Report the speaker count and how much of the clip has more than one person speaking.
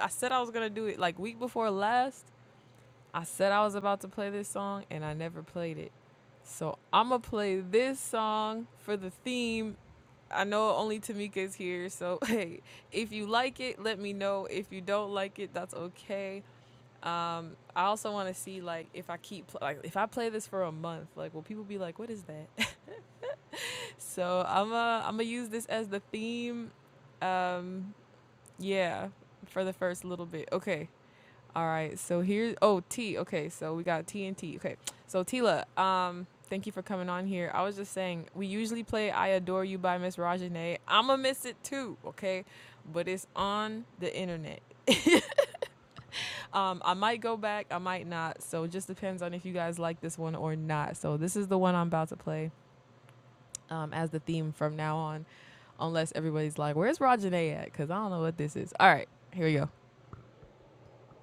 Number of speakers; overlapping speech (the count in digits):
1, no overlap